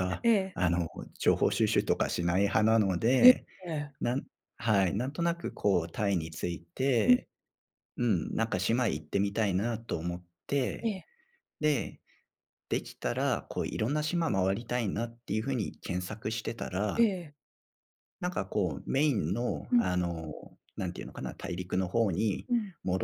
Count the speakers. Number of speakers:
2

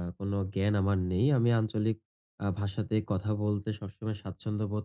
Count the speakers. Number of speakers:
1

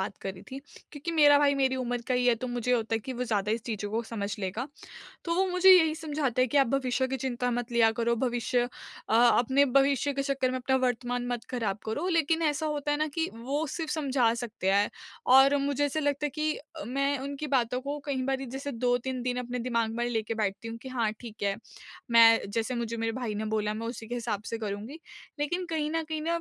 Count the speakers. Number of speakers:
1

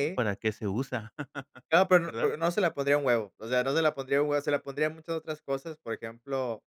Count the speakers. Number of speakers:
2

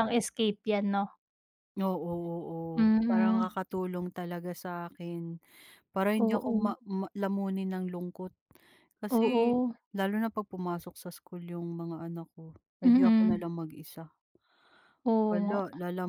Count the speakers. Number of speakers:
2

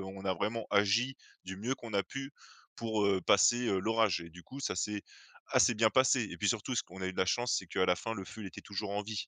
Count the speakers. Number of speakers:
1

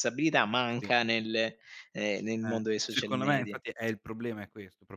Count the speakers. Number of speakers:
2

